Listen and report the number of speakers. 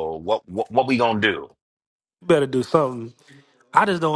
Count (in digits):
2